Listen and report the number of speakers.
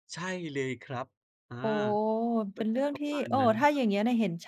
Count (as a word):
two